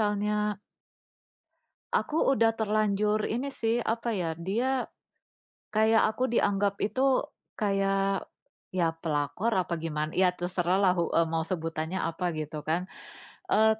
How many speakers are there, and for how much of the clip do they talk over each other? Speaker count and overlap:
1, no overlap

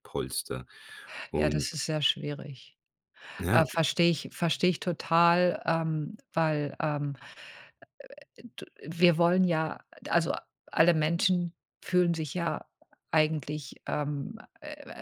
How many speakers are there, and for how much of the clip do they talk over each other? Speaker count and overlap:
2, about 4%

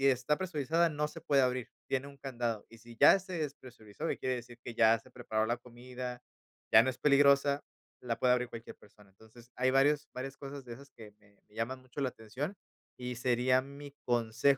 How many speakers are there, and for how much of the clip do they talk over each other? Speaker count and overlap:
1, no overlap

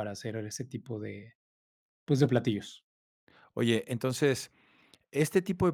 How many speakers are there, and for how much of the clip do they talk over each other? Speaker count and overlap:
2, no overlap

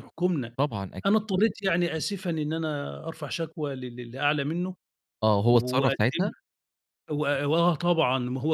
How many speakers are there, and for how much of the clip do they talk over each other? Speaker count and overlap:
2, about 10%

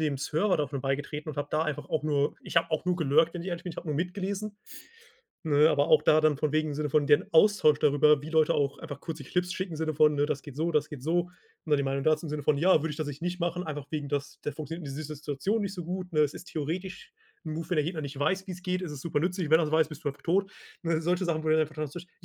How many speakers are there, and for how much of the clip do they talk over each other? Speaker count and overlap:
1, no overlap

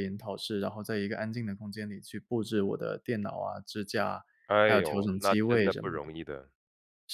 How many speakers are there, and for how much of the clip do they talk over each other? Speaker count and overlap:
2, about 20%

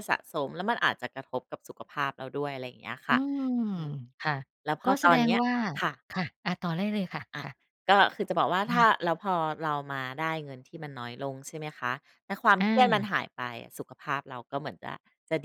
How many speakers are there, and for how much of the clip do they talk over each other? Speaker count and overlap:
2, about 7%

